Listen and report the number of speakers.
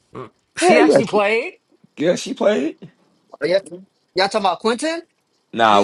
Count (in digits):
3